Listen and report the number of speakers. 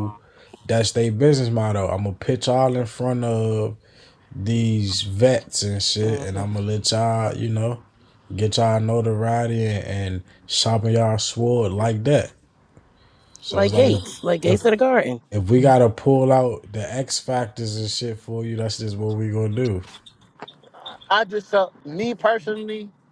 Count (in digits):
3